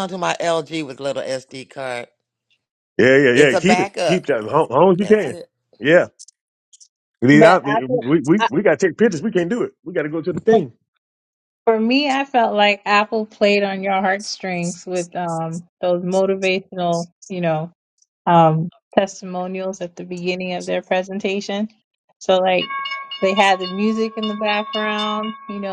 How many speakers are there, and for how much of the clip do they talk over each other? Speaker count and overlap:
3, about 6%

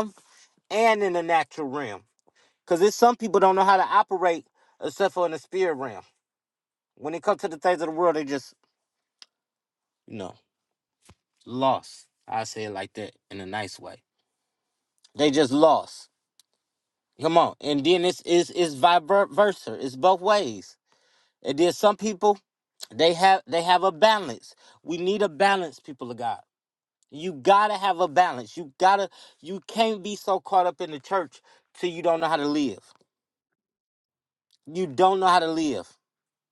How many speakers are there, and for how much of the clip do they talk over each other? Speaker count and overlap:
1, no overlap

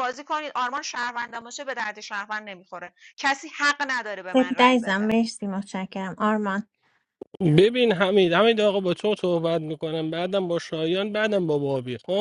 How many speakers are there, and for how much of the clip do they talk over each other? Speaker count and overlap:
3, about 6%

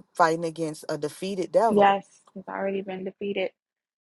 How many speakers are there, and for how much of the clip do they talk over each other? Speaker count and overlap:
2, about 6%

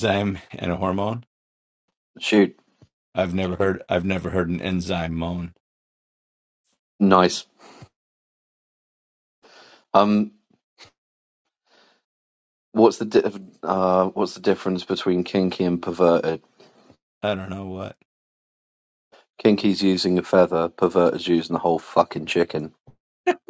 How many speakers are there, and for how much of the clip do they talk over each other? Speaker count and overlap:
2, no overlap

